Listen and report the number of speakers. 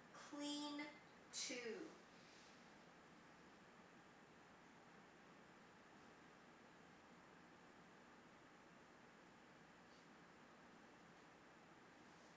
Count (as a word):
one